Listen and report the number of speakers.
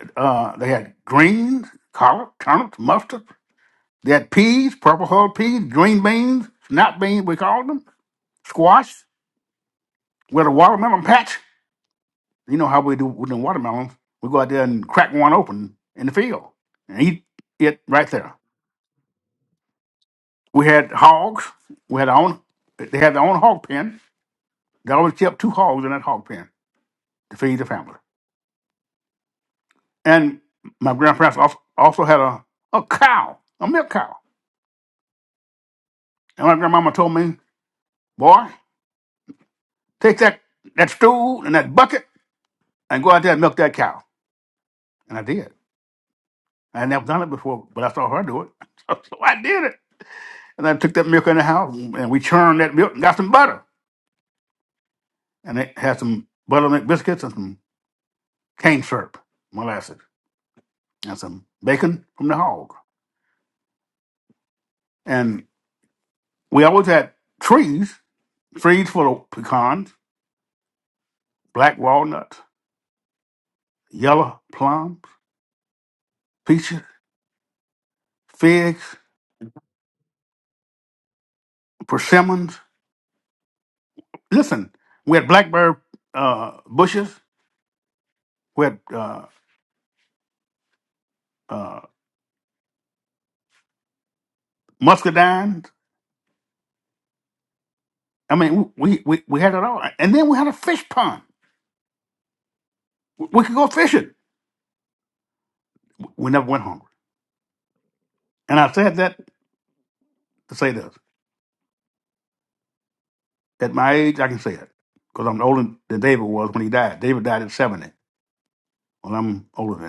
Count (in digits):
1